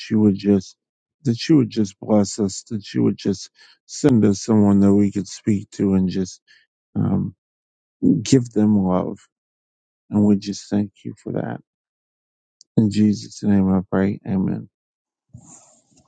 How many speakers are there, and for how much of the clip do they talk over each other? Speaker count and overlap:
one, no overlap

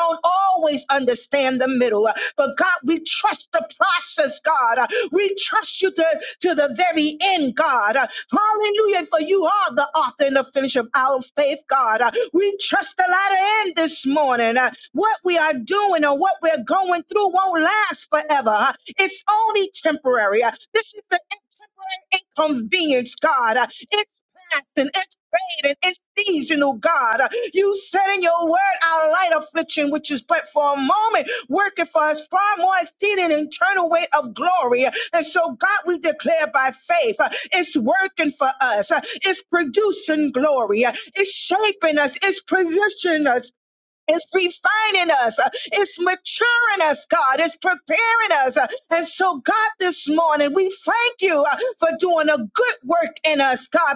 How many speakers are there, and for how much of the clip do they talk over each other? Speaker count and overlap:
one, no overlap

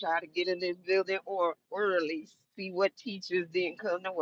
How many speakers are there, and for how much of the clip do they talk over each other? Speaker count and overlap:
one, no overlap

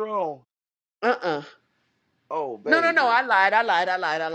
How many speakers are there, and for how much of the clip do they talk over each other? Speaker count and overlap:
two, about 12%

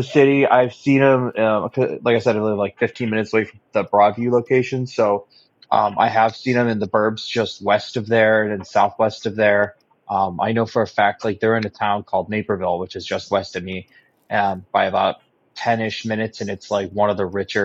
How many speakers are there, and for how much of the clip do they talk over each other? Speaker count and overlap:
one, no overlap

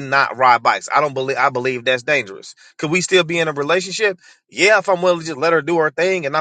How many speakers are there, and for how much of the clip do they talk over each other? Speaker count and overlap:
one, no overlap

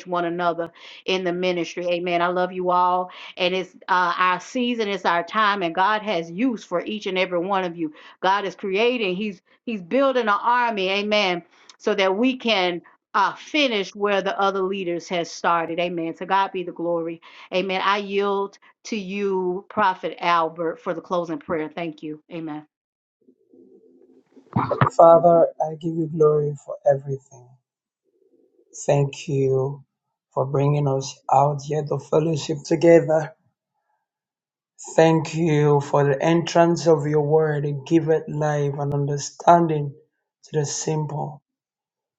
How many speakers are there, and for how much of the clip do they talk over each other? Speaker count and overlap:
two, no overlap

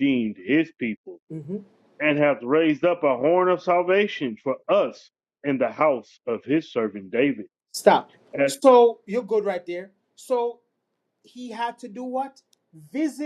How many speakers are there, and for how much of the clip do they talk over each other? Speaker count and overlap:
two, about 1%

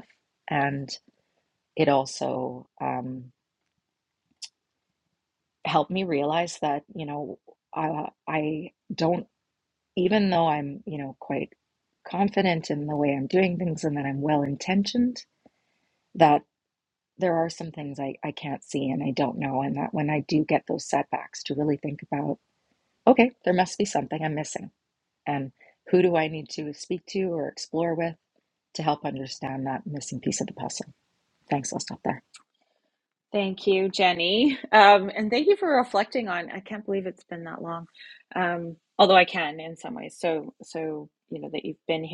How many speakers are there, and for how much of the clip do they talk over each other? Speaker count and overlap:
two, no overlap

